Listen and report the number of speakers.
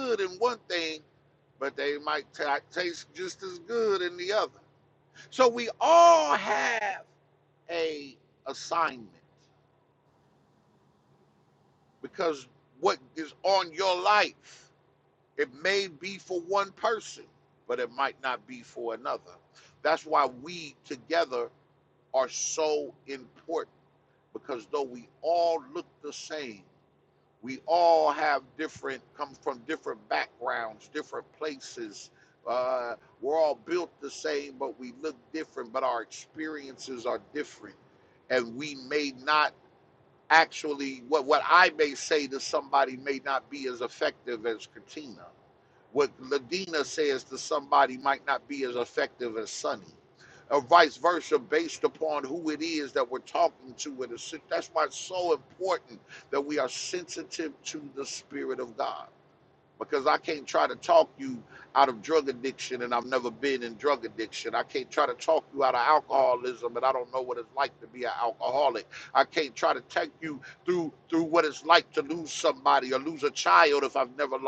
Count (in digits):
1